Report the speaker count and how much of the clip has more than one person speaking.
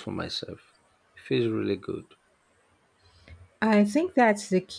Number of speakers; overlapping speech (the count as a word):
two, no overlap